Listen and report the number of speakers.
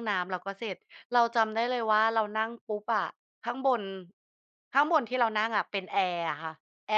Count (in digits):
1